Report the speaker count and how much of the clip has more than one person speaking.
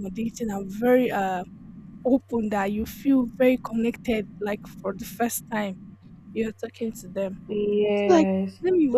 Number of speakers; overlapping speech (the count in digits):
2, about 4%